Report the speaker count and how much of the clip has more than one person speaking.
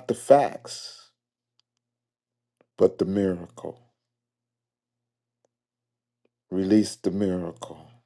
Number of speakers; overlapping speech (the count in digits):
1, no overlap